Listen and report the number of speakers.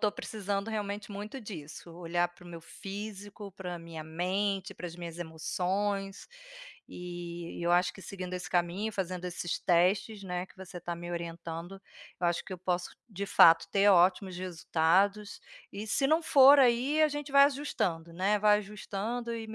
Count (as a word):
one